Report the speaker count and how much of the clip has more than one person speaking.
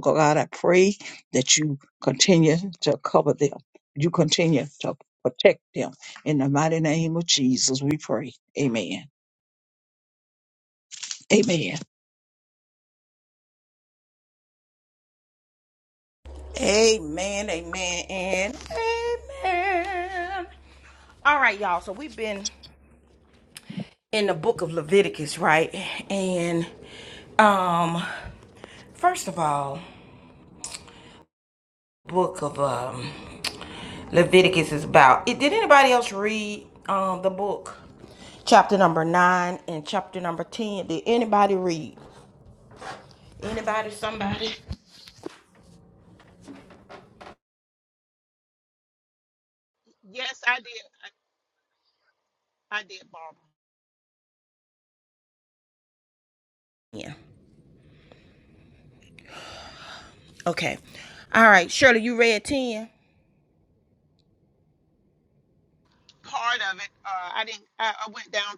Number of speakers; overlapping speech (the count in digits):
3, no overlap